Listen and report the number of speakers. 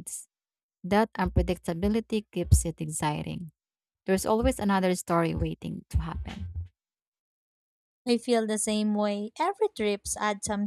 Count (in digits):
2